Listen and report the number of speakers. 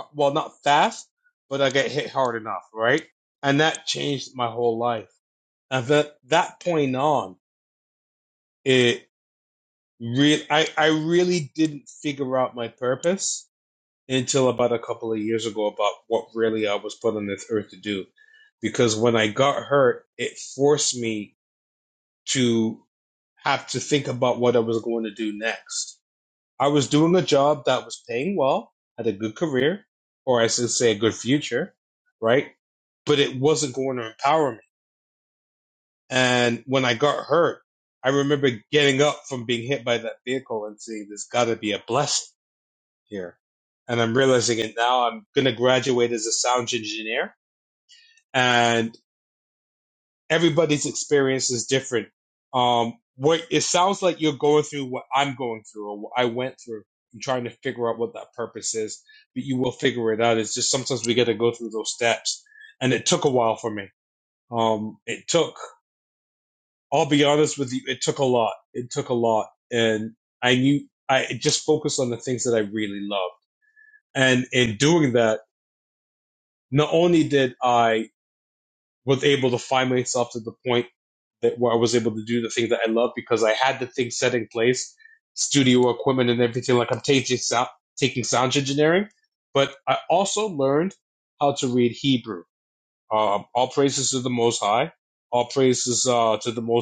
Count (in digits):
1